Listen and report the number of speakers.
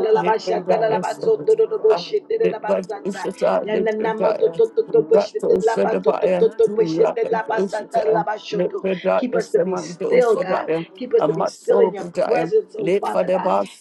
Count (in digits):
2